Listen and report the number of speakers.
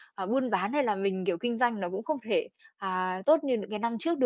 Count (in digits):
1